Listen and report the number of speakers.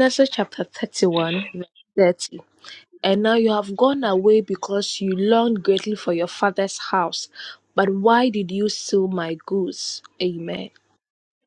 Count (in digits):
1